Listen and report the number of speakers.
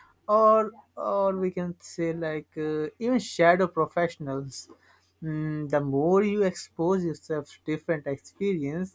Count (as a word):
one